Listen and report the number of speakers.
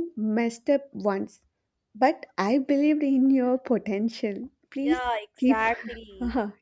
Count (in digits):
2